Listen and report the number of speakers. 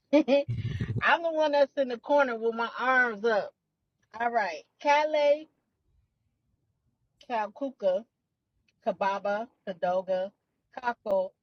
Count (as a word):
one